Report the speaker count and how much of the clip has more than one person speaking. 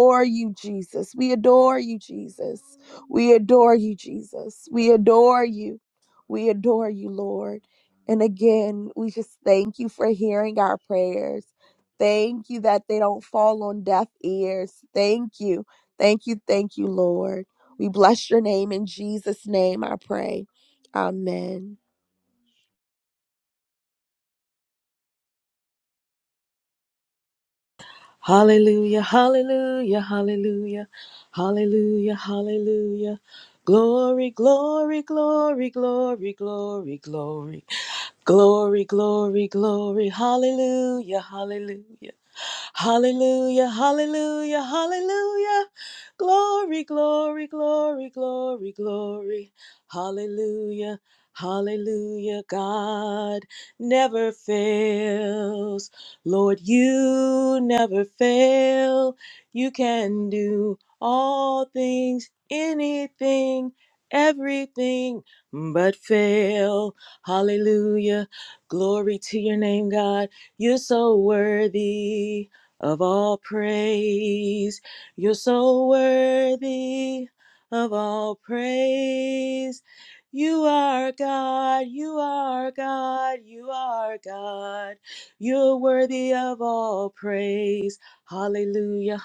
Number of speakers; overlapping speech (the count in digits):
2, no overlap